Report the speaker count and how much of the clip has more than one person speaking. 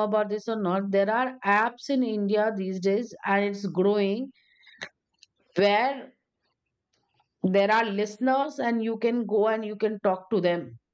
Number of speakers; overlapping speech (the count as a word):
one, no overlap